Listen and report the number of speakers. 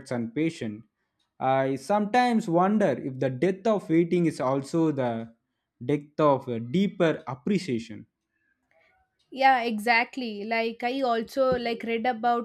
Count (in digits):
2